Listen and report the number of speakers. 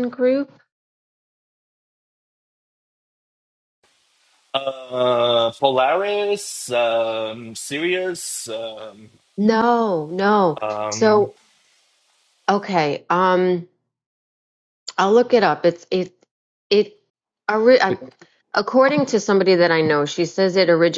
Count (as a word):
two